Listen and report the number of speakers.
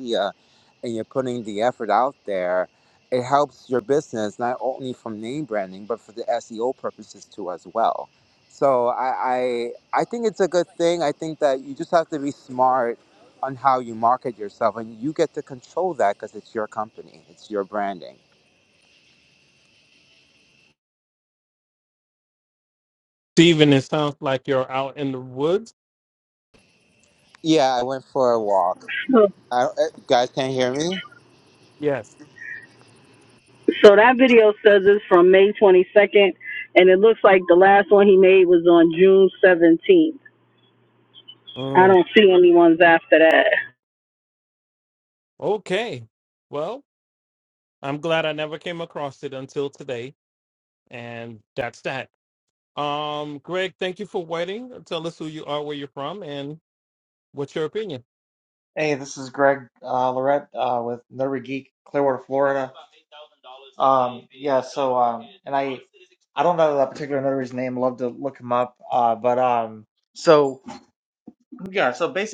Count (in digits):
4